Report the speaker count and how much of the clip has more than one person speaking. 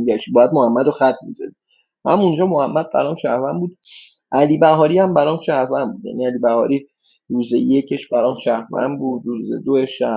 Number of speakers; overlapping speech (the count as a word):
one, no overlap